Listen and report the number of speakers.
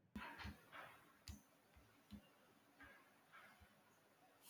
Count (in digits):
0